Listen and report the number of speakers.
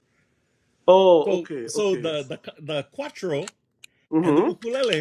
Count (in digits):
2